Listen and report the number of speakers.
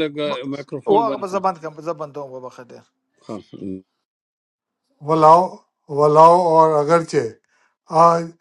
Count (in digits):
3